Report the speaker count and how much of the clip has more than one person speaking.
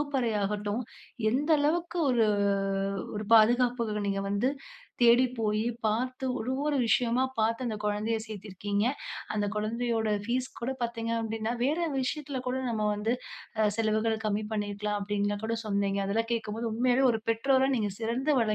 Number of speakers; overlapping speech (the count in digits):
1, no overlap